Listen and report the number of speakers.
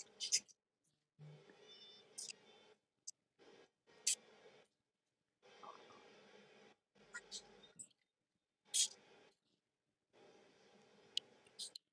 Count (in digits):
0